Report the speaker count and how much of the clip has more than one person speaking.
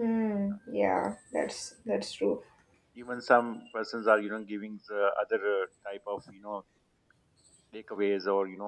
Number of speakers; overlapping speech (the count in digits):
2, no overlap